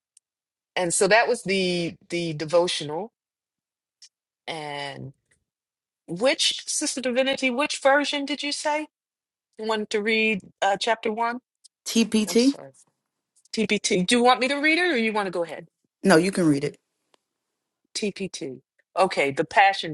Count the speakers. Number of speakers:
2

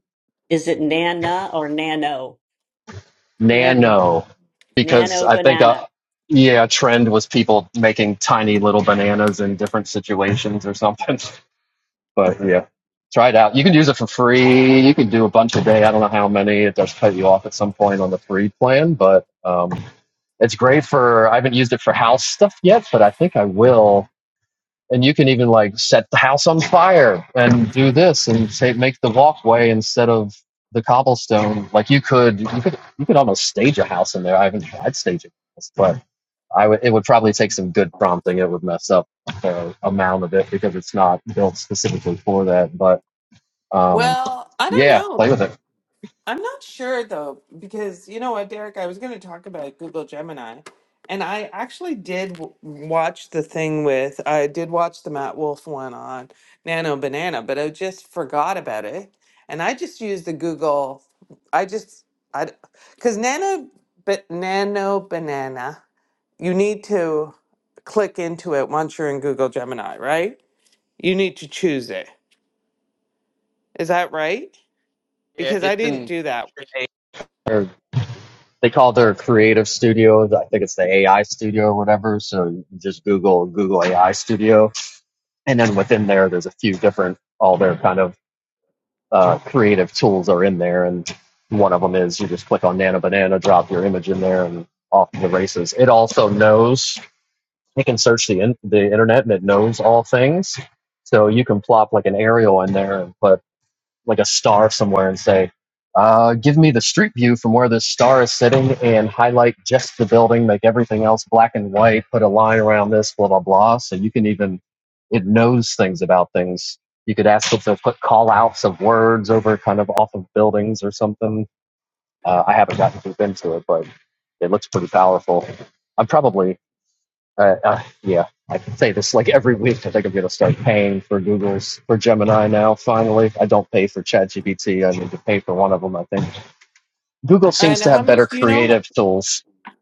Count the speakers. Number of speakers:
3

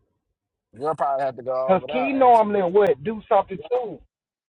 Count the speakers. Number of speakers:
2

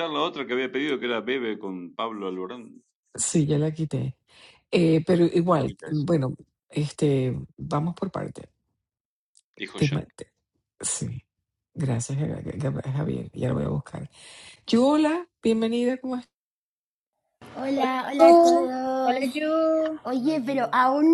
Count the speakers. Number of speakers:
4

